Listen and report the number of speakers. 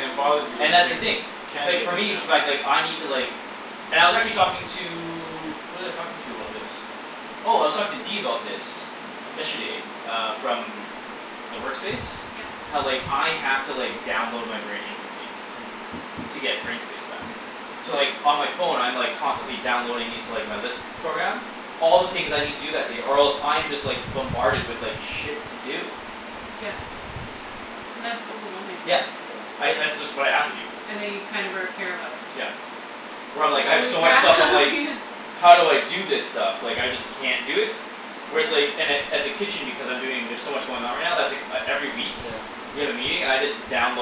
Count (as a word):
three